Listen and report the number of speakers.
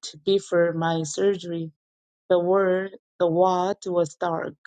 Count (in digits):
1